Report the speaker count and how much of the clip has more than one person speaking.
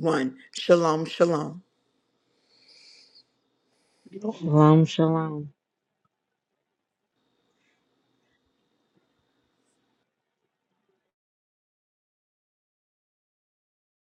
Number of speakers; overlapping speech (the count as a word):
two, no overlap